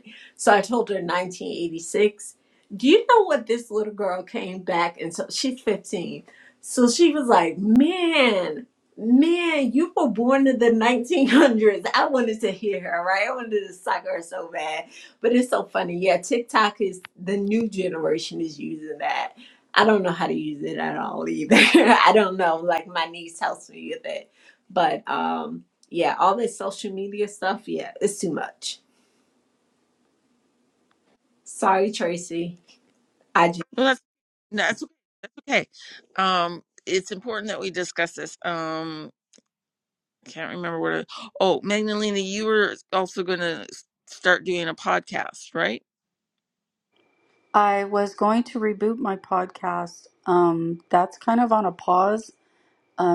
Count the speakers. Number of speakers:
3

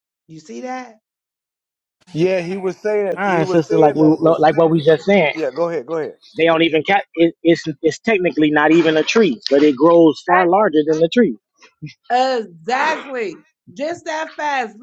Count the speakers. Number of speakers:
3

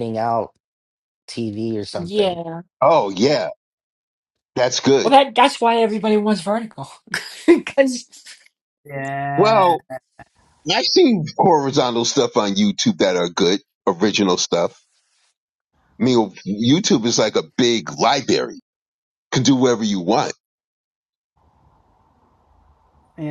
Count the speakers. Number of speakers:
4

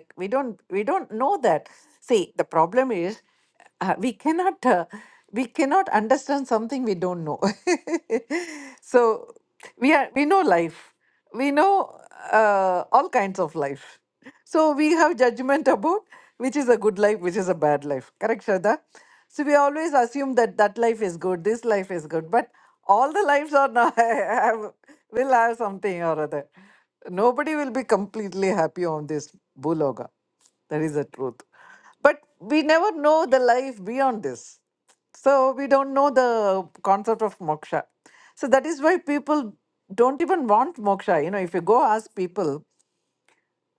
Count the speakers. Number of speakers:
1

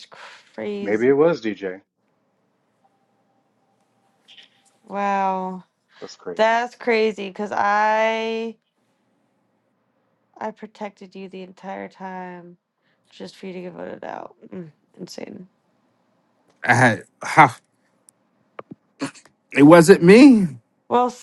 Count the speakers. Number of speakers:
3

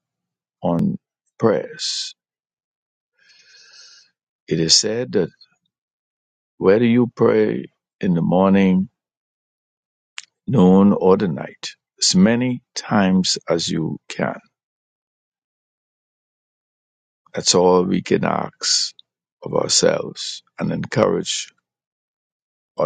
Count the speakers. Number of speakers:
1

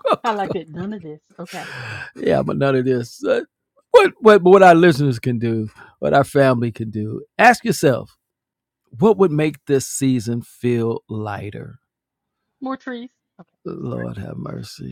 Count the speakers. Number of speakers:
2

